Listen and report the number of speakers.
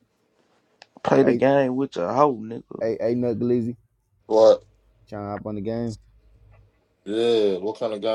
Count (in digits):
3